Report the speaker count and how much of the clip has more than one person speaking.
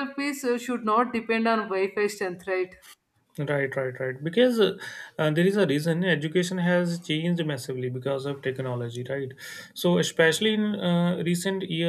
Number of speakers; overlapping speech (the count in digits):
2, no overlap